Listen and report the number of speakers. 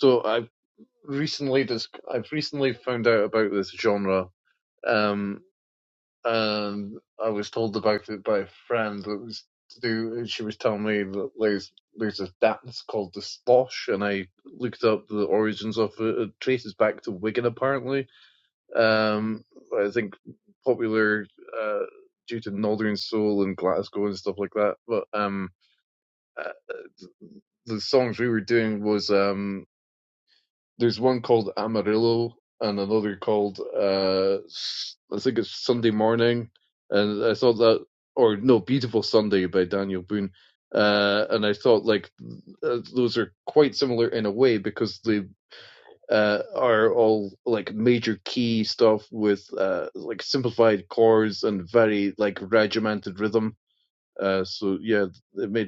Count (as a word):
one